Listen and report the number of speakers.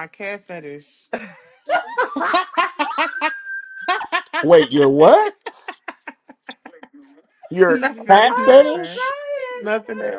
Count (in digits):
3